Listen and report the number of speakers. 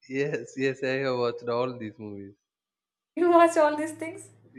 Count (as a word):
two